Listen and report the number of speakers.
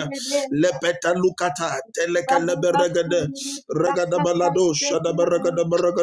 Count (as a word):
one